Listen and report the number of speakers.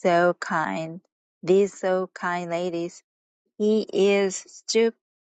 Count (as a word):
one